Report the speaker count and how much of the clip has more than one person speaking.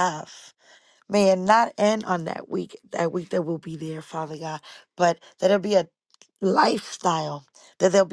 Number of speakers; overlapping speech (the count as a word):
one, no overlap